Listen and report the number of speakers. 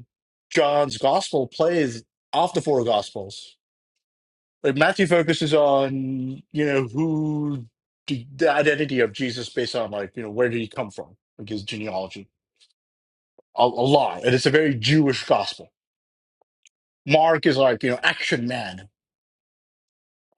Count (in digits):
1